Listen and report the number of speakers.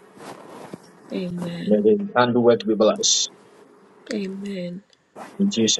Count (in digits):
2